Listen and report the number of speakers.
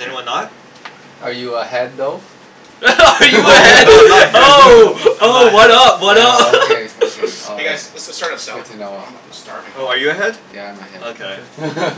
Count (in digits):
4